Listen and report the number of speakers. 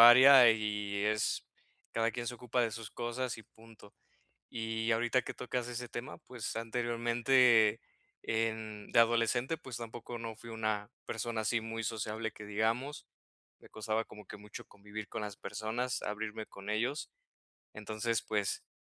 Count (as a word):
one